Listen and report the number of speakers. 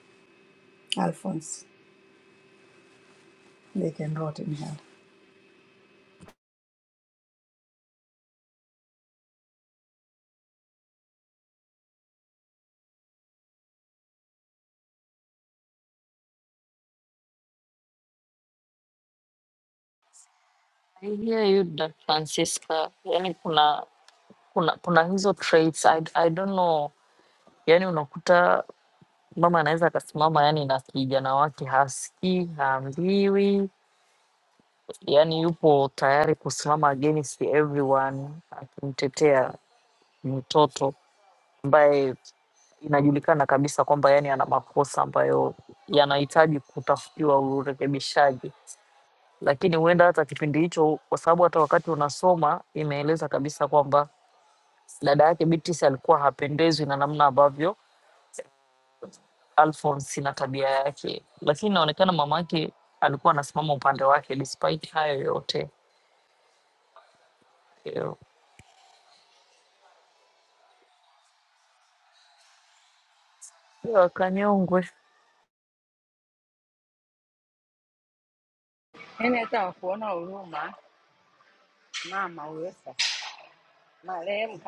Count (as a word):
three